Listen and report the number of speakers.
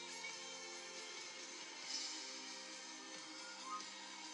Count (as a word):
zero